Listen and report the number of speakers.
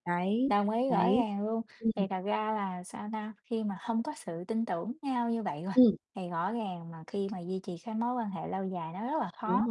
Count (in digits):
2